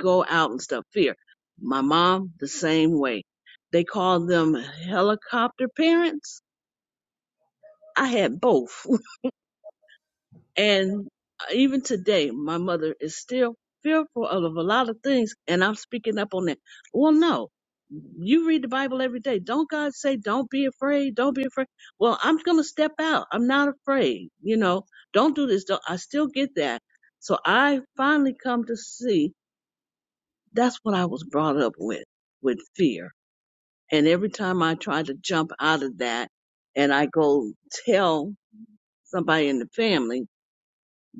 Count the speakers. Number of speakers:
1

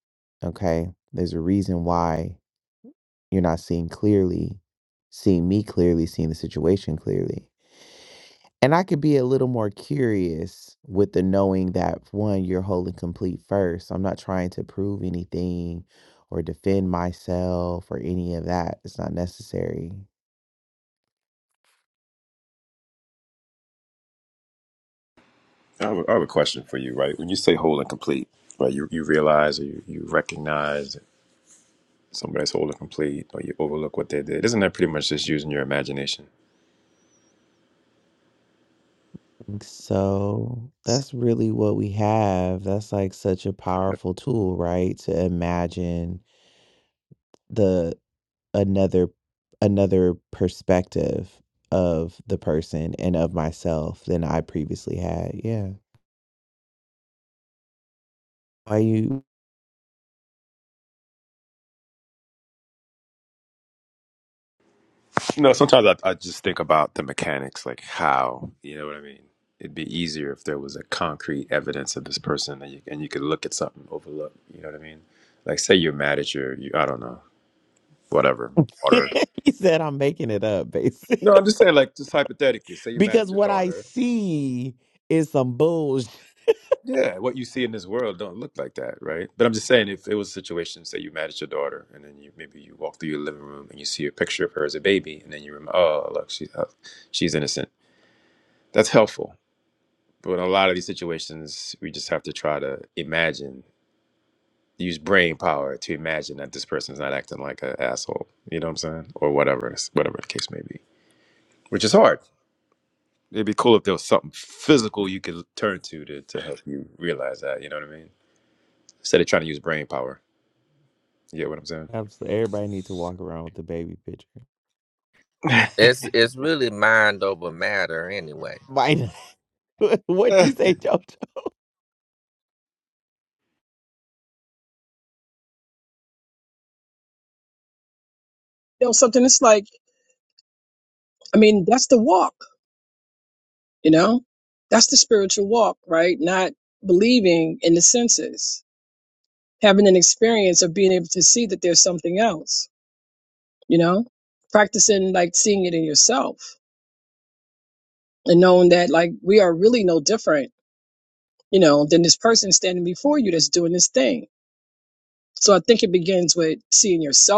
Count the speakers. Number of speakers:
4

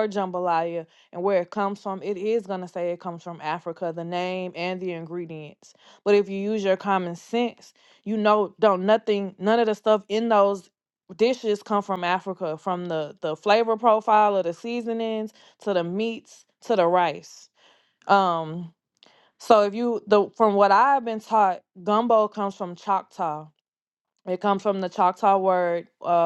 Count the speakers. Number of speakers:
1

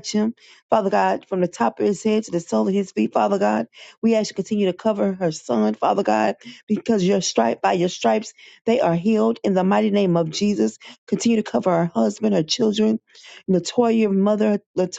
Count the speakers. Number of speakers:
1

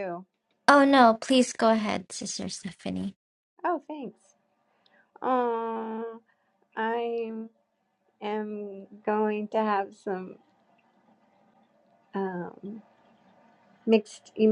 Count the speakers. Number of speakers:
2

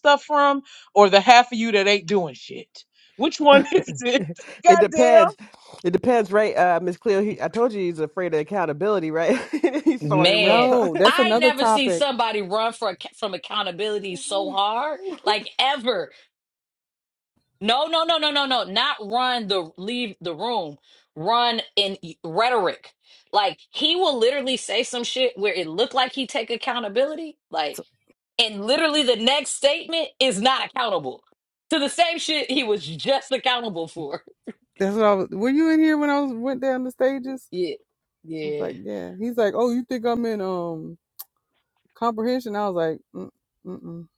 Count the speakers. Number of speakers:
4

